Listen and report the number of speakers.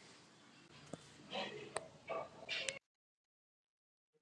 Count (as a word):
zero